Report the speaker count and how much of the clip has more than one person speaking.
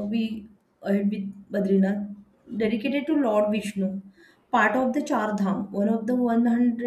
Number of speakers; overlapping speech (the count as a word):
one, no overlap